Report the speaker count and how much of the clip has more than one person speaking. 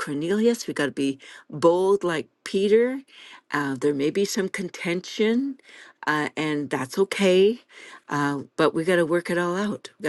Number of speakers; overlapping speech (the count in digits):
1, no overlap